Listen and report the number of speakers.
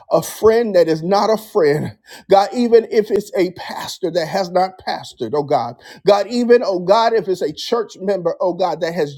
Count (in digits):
1